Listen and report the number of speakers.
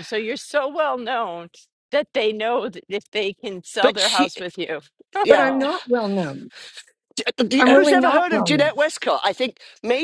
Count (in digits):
3